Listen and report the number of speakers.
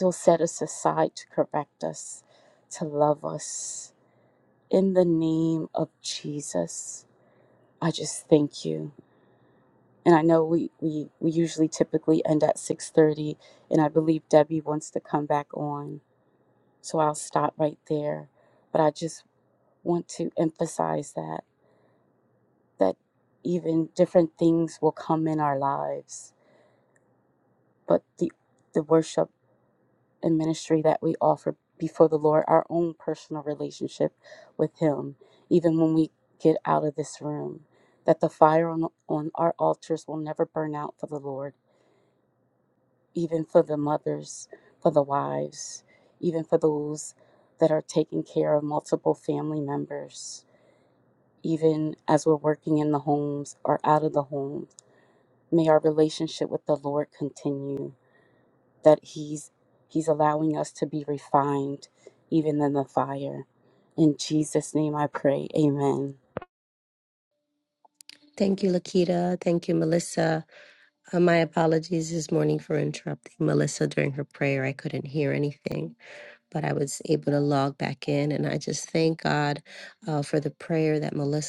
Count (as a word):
two